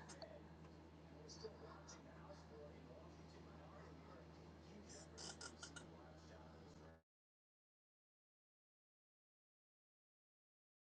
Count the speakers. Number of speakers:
zero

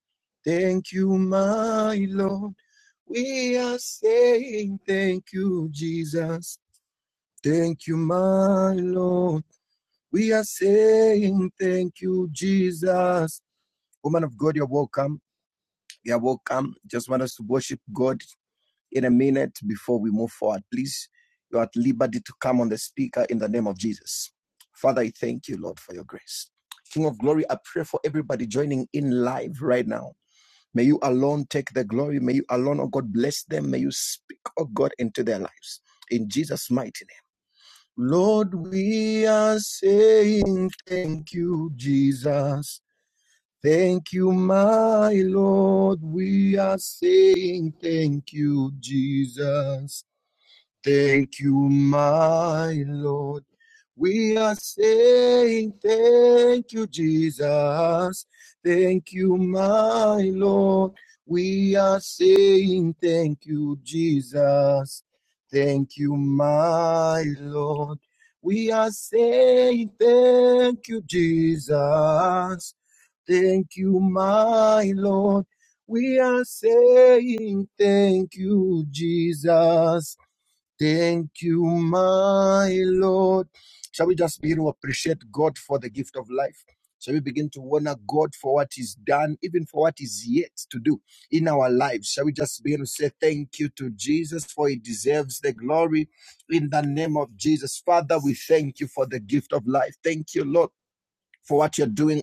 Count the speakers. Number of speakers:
one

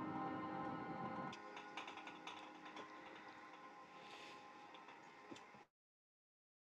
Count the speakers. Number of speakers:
zero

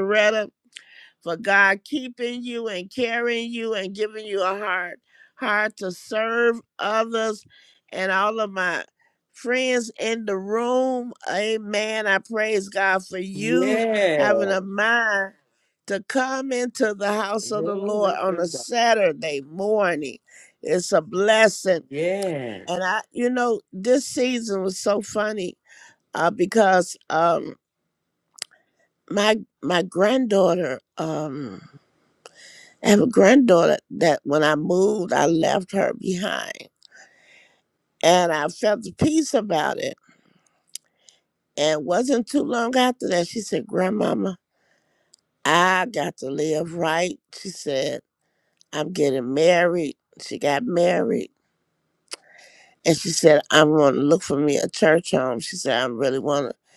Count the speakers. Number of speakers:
two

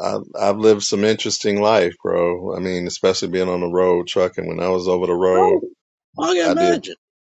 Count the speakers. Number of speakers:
two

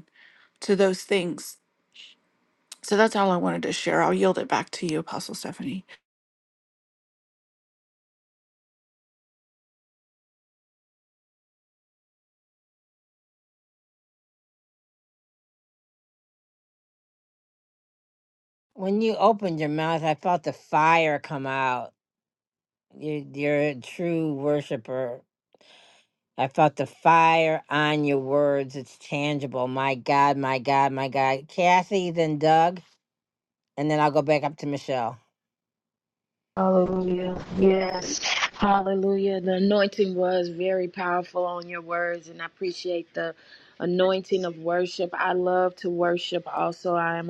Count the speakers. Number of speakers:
three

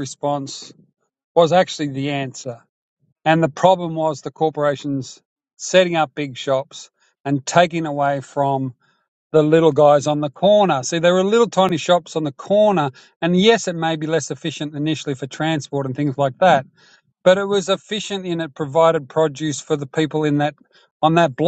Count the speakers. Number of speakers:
one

